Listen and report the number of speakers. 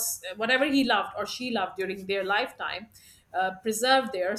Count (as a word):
one